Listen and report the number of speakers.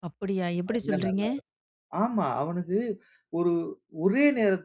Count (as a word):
two